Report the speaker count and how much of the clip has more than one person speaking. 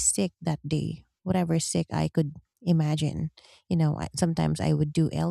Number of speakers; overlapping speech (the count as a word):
one, no overlap